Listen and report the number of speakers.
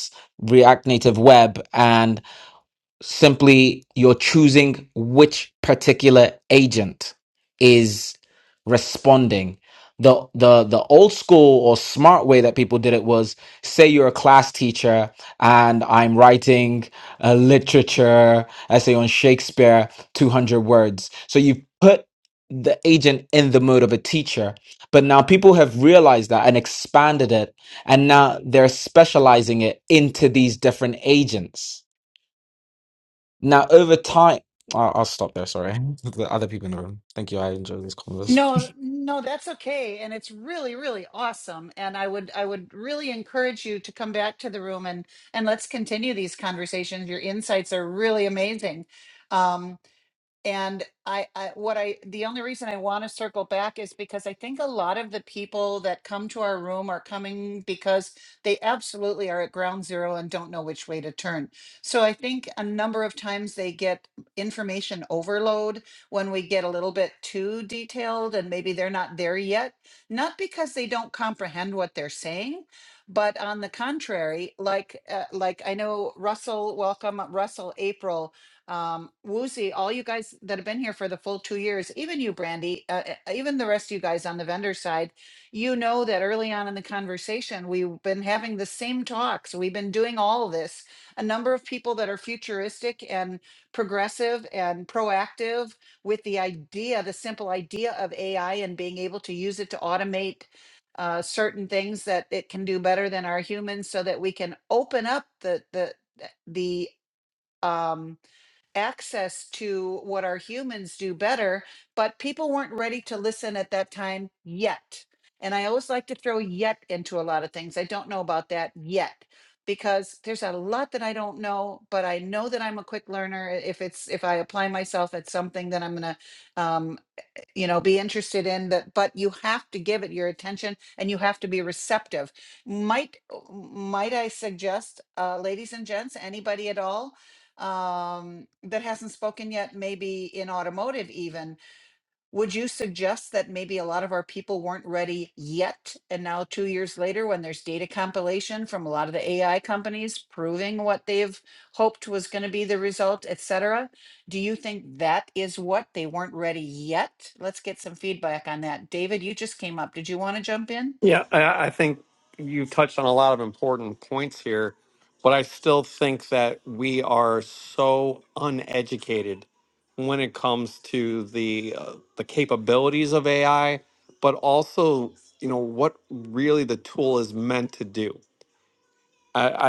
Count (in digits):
3